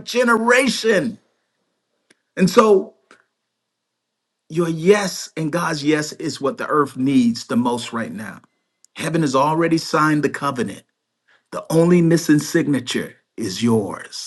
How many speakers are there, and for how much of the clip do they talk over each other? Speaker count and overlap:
one, no overlap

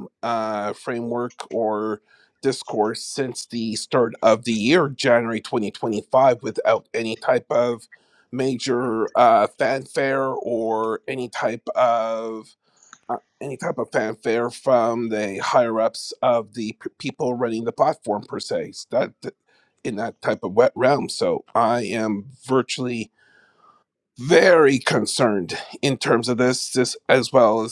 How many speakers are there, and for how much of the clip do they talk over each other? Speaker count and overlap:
one, no overlap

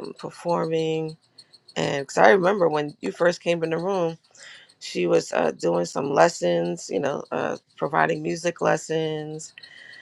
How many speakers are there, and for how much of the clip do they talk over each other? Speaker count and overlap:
one, no overlap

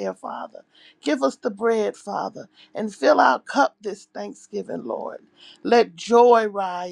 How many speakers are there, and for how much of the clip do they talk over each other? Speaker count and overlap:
one, no overlap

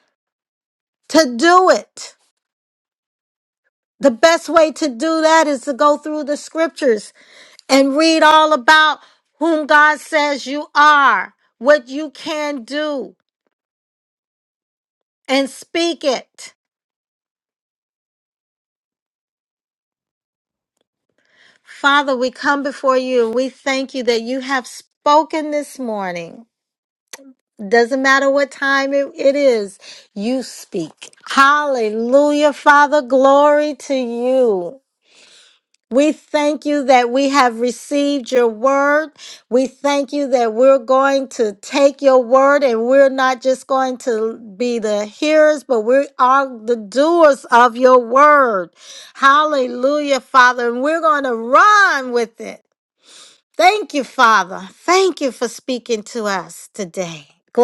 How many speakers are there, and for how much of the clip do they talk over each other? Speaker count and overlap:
one, no overlap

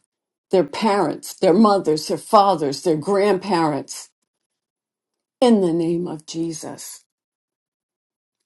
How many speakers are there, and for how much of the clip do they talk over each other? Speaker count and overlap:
one, no overlap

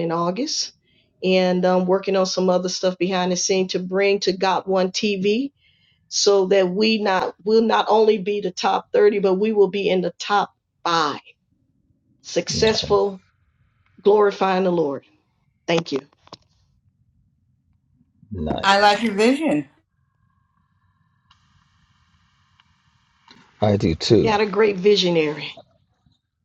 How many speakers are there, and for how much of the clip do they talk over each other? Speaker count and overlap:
three, about 3%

